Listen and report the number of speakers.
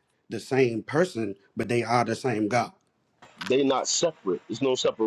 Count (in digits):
2